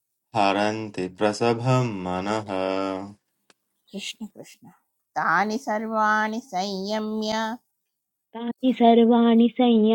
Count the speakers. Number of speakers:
3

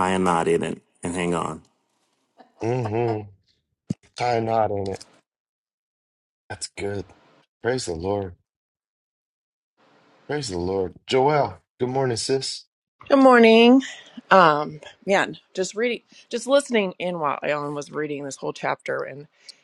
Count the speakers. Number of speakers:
3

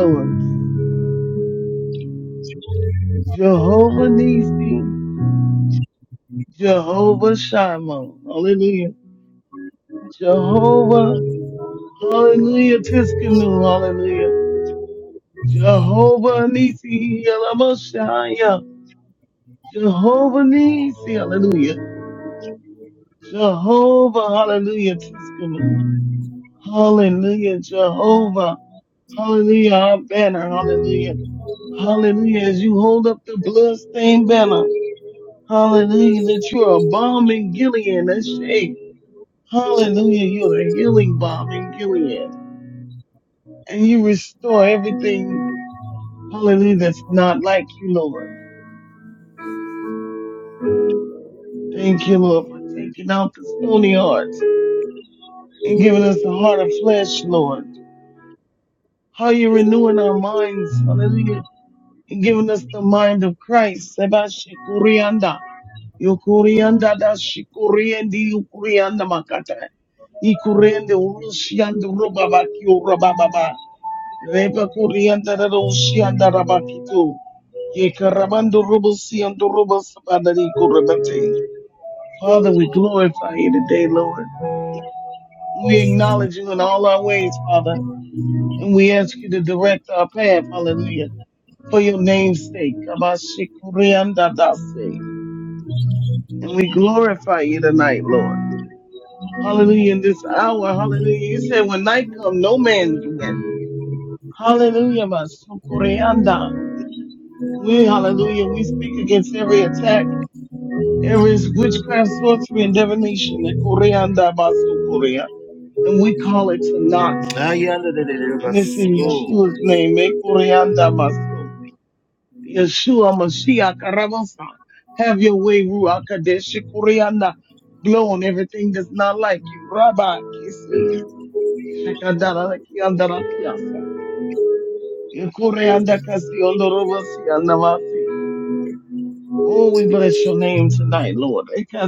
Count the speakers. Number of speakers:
2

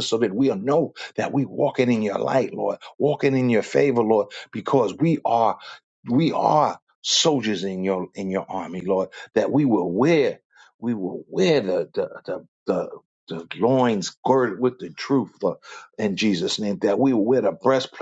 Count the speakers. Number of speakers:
1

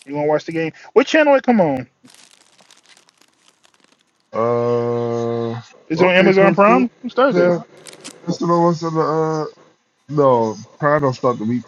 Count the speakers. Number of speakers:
2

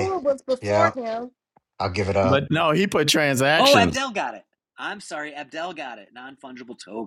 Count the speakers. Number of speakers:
4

